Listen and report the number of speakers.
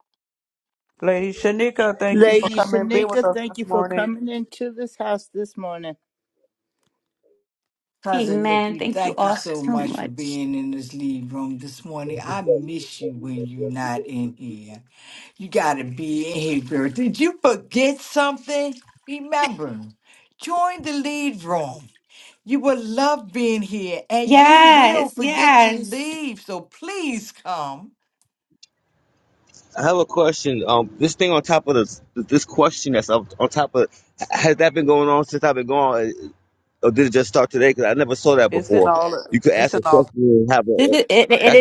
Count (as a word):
five